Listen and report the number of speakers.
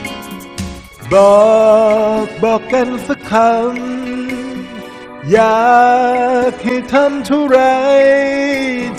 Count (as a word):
one